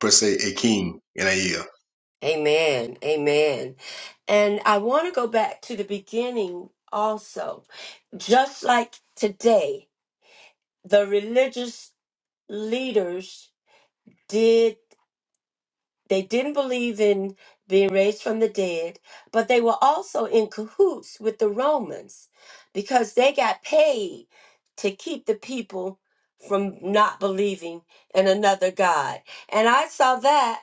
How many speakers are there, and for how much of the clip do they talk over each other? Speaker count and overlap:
2, no overlap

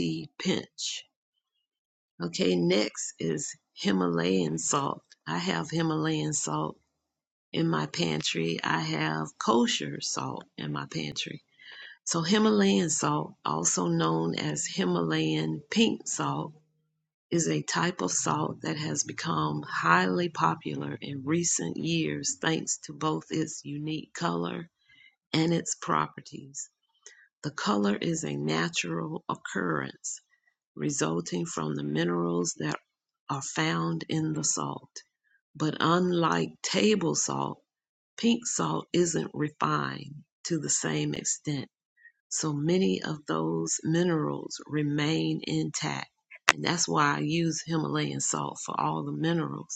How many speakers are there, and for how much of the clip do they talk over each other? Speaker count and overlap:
1, no overlap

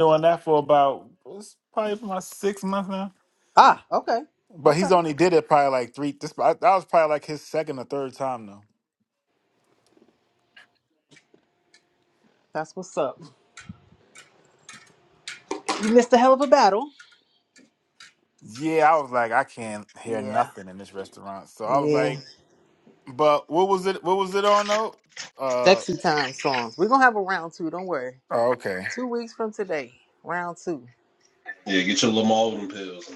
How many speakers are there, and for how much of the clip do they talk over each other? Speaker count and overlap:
3, about 5%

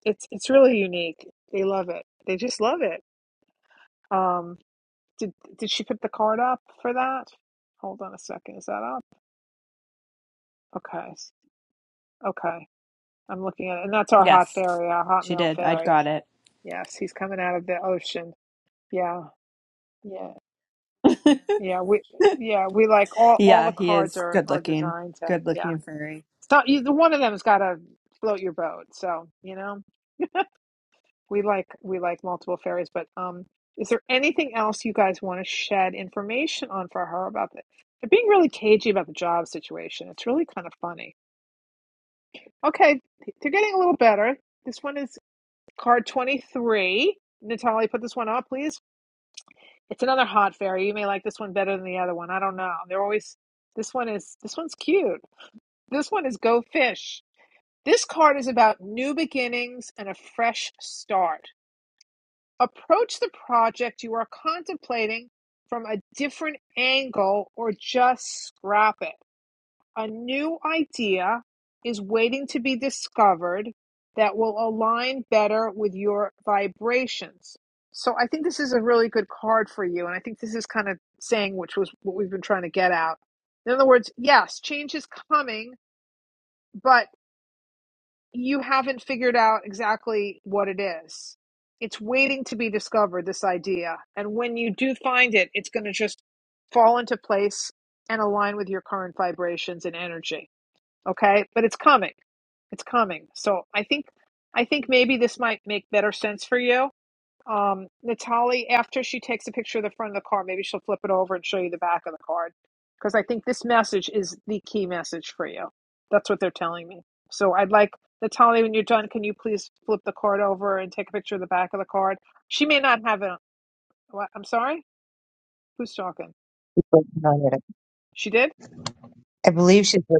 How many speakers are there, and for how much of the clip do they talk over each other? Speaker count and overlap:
3, about 2%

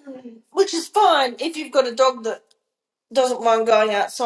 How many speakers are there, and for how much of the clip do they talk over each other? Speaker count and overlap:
1, no overlap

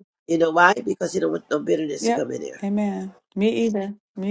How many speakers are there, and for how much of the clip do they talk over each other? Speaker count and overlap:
2, about 6%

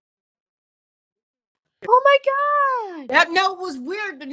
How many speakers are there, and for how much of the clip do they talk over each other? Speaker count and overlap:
2, no overlap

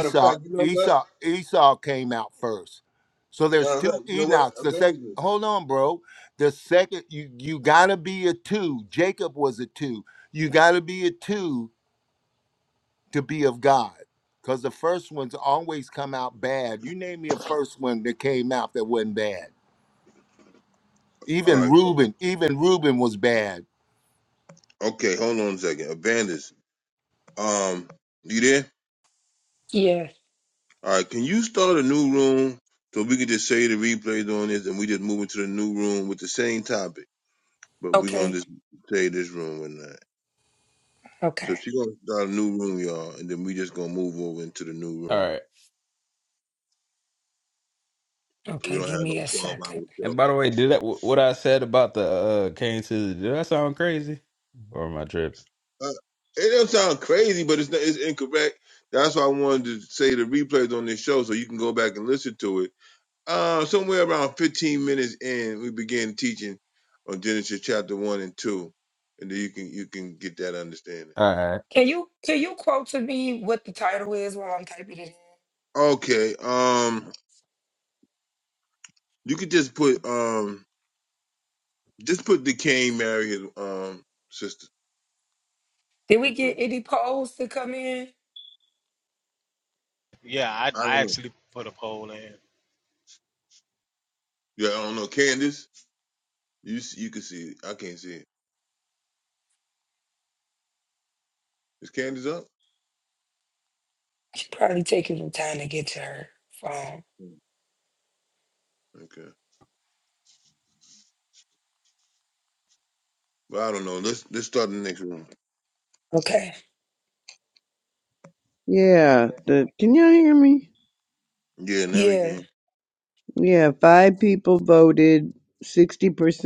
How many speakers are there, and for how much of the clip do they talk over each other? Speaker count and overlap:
6, about 5%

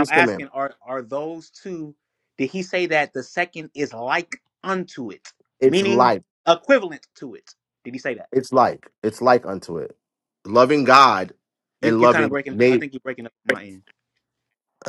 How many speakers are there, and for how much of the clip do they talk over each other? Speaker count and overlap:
2, about 13%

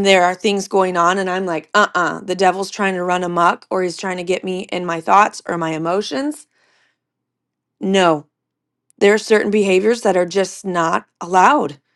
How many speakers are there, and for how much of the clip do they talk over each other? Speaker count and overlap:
1, no overlap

